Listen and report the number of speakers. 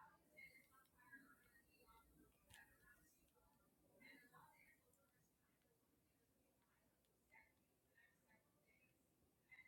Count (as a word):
zero